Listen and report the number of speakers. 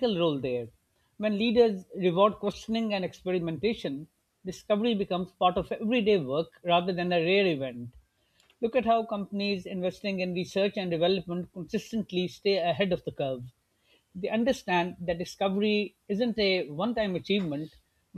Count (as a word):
one